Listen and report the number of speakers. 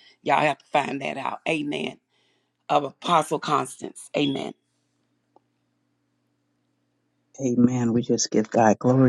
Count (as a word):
two